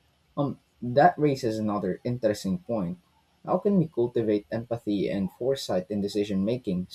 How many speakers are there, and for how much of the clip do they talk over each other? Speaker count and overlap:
one, no overlap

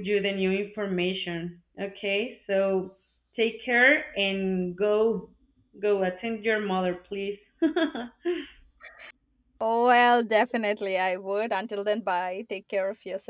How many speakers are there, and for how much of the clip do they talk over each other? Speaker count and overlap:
two, no overlap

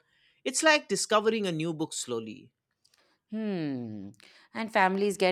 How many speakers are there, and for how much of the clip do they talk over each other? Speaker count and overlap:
two, no overlap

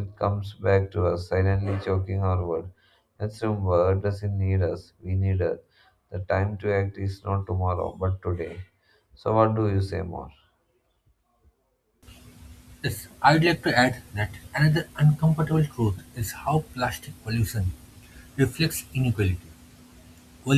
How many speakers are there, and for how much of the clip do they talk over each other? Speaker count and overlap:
two, no overlap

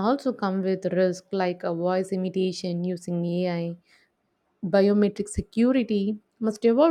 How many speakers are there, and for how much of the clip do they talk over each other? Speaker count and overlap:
one, no overlap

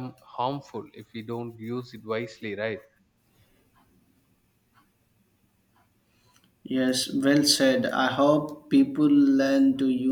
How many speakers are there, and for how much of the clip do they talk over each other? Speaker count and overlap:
two, no overlap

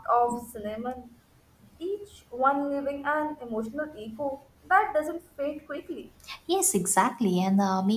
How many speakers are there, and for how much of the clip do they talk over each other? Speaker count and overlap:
two, no overlap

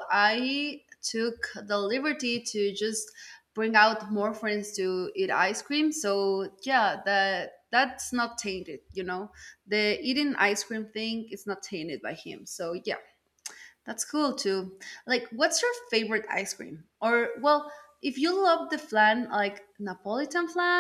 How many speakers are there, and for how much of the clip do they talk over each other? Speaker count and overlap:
one, no overlap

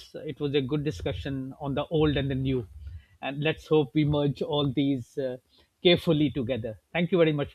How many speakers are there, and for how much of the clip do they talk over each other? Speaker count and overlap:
one, no overlap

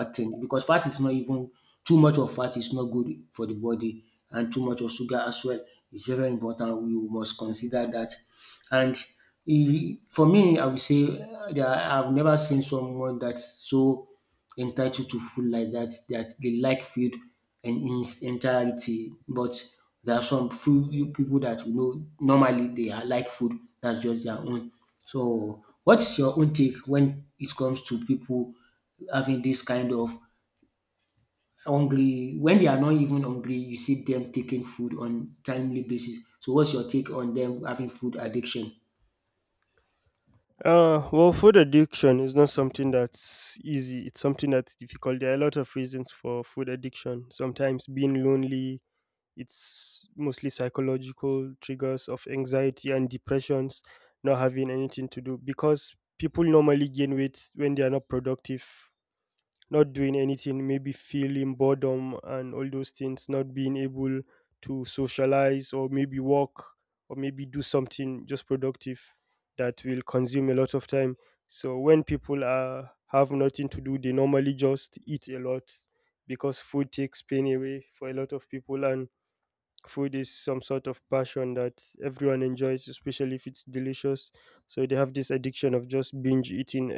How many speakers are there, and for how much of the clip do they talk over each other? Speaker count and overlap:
two, no overlap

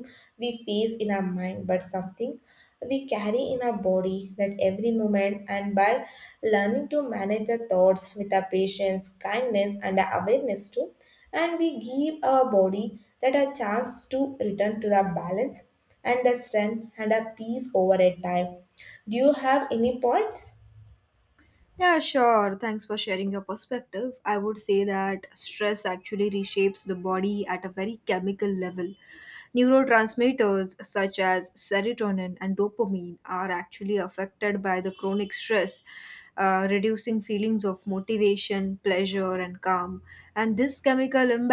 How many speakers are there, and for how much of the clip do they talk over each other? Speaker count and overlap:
two, no overlap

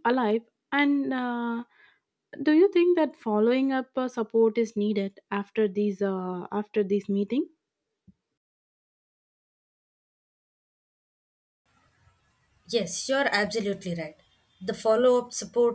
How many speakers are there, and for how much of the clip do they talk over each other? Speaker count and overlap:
two, no overlap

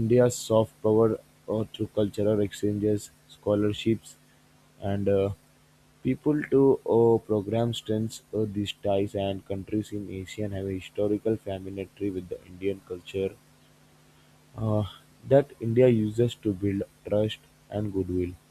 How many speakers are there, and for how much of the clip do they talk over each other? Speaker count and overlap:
one, no overlap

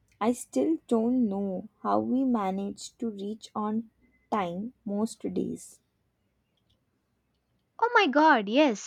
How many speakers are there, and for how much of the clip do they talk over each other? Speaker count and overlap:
two, no overlap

